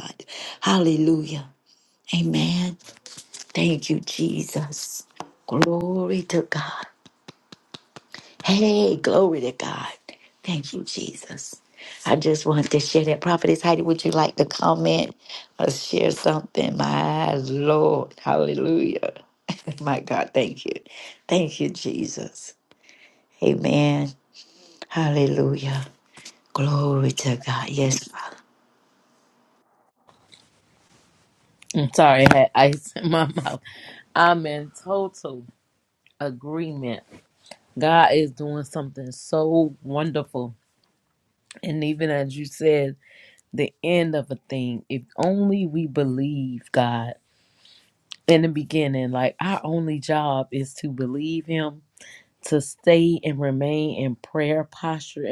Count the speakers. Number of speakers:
two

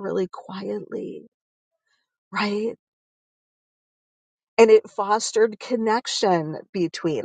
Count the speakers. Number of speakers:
one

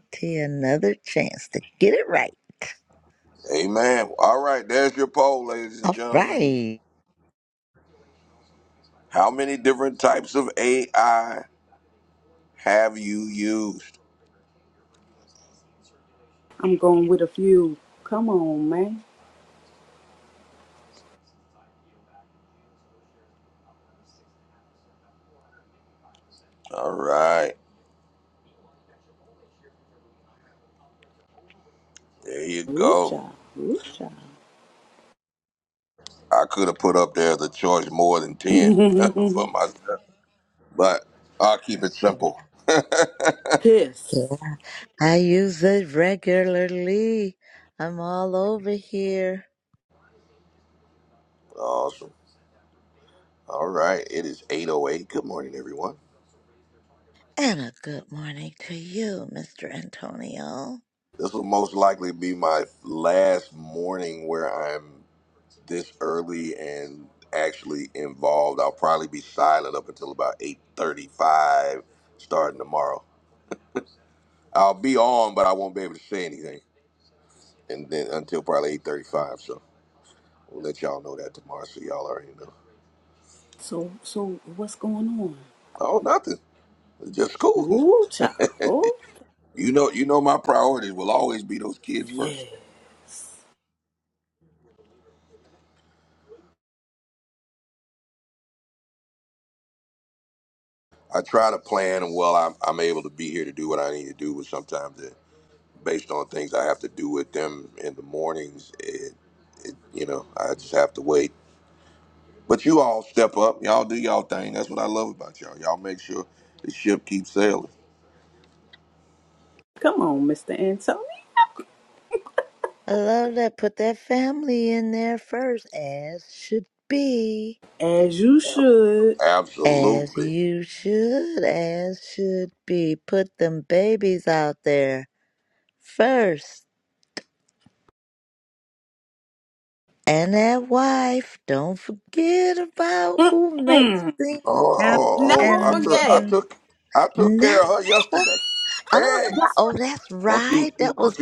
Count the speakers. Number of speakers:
three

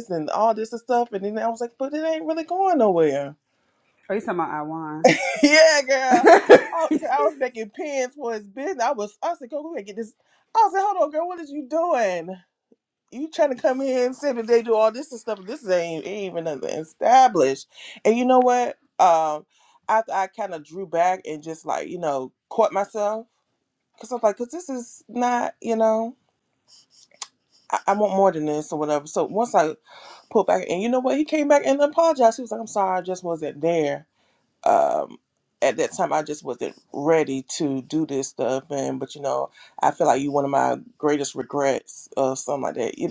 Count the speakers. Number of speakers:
two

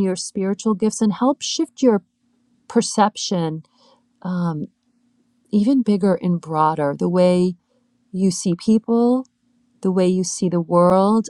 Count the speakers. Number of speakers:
one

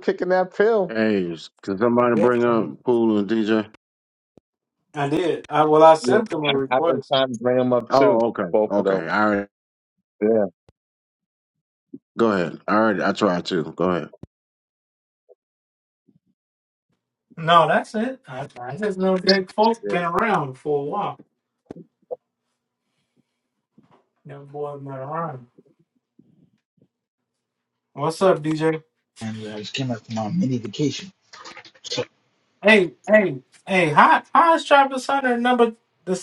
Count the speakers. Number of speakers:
four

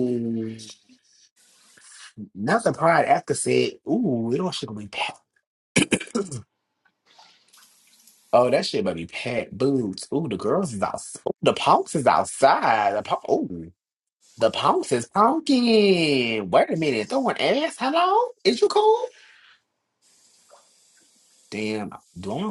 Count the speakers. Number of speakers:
one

